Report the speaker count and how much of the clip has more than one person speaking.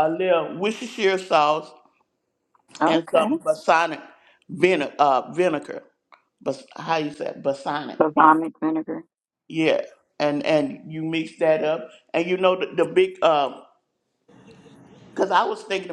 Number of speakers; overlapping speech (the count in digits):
2, about 5%